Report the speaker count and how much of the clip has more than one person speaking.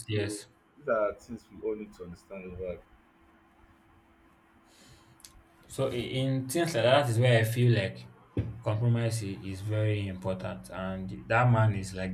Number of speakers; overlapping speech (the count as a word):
two, about 2%